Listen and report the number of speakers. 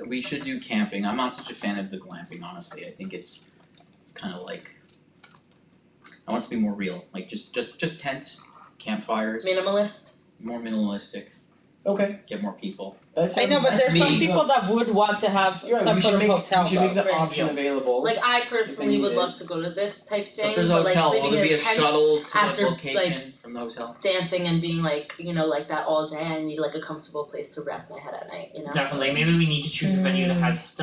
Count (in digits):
5